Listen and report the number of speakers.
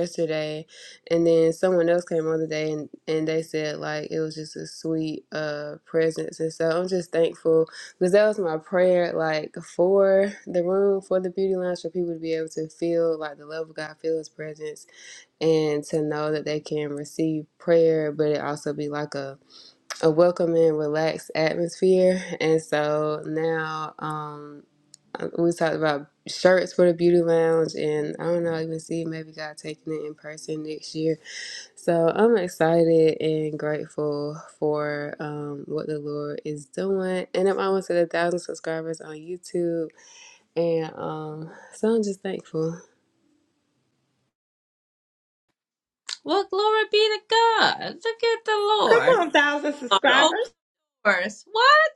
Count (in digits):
3